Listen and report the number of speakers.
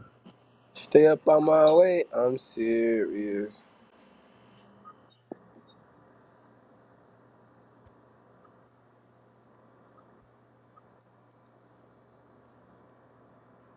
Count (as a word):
one